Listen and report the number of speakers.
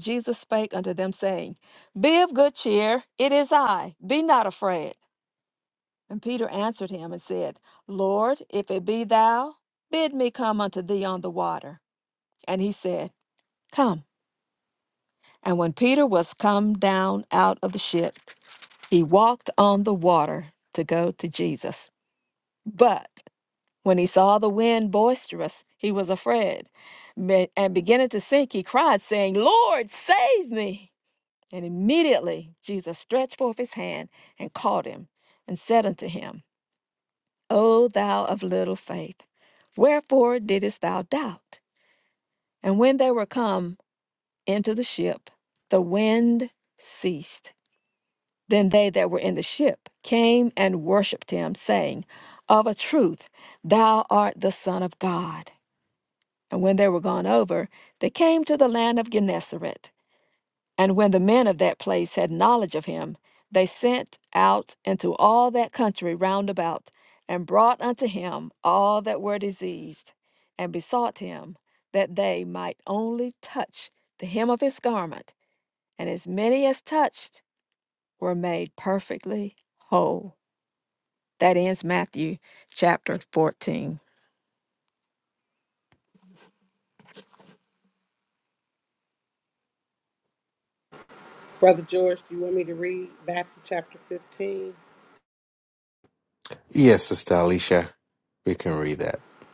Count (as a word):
three